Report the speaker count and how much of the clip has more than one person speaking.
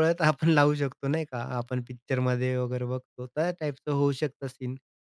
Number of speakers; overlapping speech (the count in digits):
1, no overlap